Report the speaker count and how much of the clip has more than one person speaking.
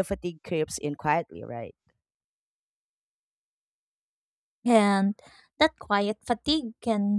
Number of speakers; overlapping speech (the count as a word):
two, no overlap